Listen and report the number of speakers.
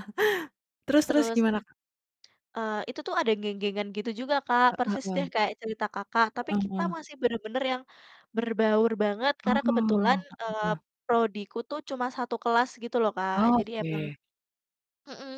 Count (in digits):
2